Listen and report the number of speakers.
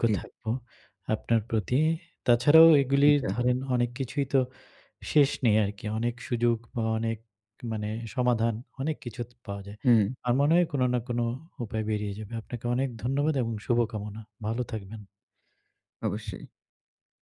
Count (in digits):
2